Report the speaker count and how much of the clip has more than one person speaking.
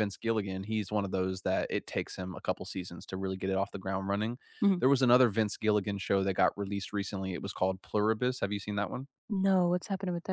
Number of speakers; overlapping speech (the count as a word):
two, no overlap